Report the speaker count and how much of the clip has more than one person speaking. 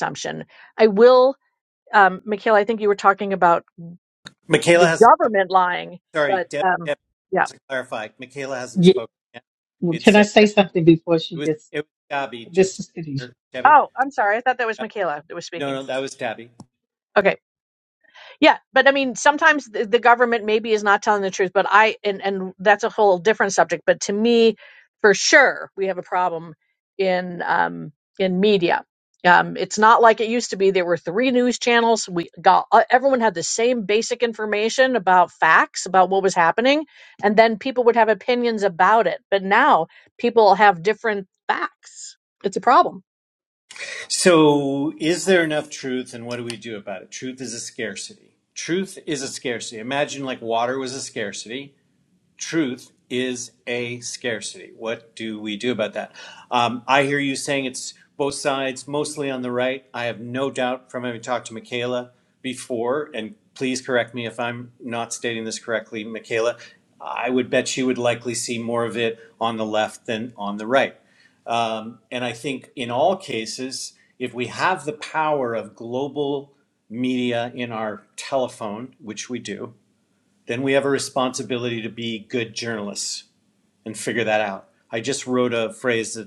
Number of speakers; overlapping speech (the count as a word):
three, about 3%